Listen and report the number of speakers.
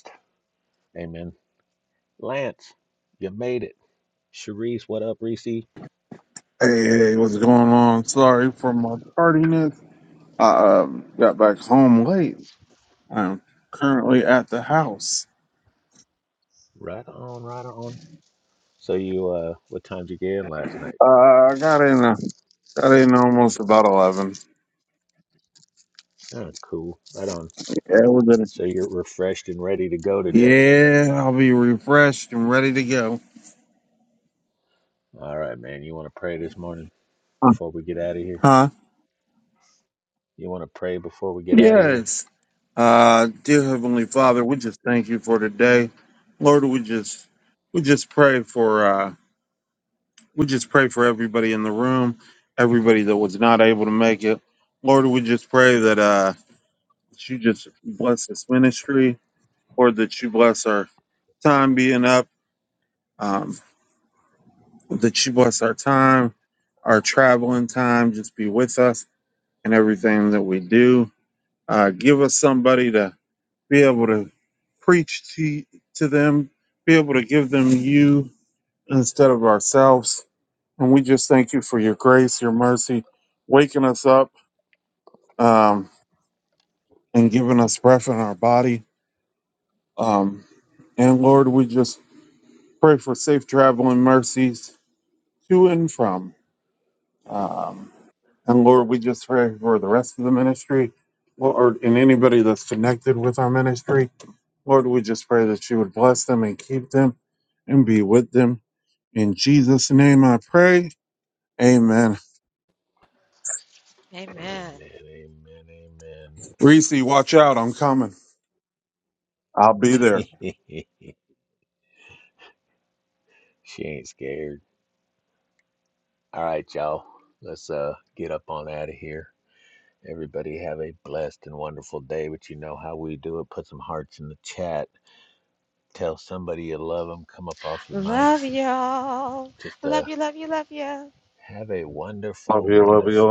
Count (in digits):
3